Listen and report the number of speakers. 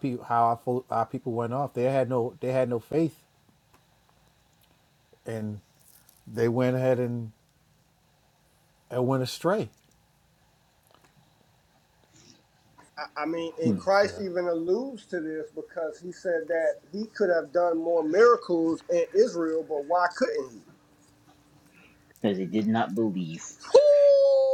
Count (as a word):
three